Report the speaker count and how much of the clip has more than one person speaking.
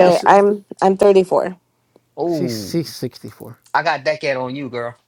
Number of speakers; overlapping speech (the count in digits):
3, about 15%